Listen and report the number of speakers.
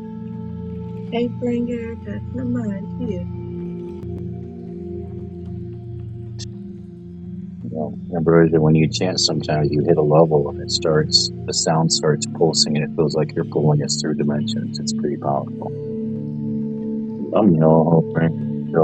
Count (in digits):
2